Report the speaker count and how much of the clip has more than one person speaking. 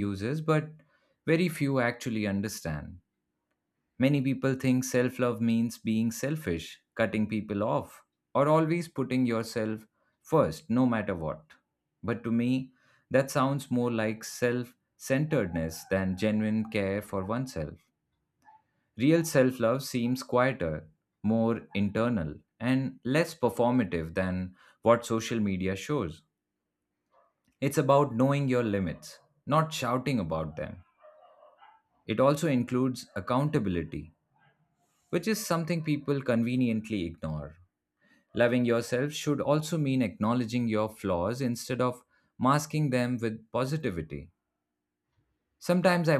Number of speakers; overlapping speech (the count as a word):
one, no overlap